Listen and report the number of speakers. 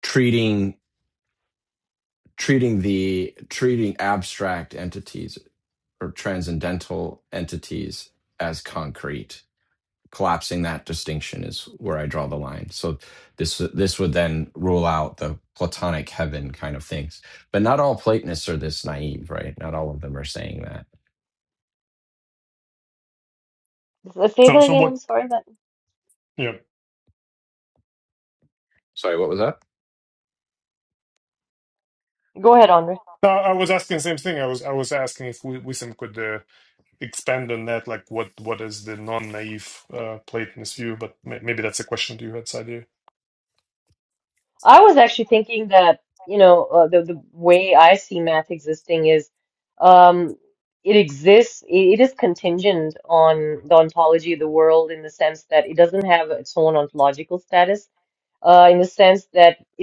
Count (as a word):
three